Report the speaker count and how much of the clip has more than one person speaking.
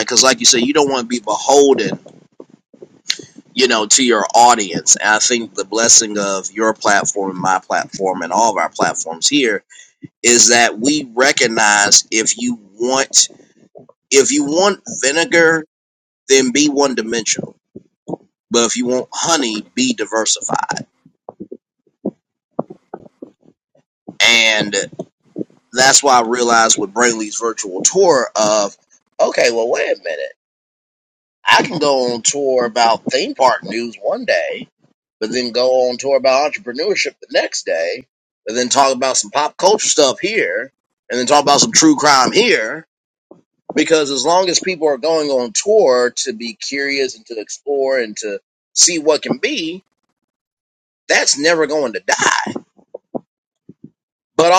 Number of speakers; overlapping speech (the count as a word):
one, no overlap